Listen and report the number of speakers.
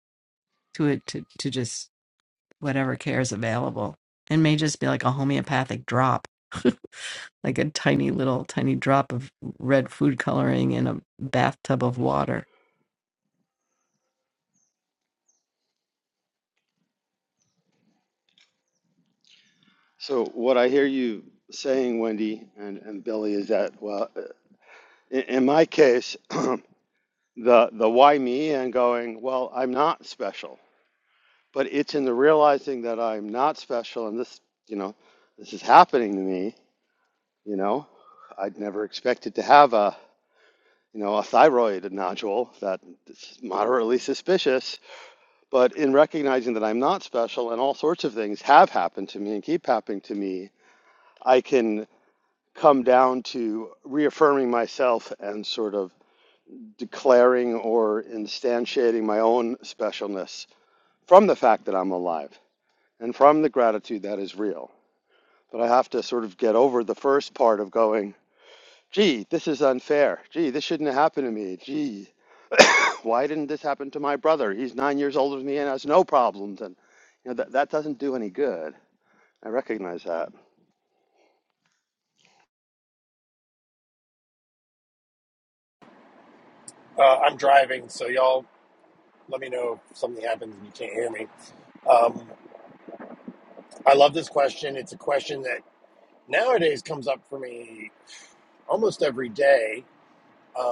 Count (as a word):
three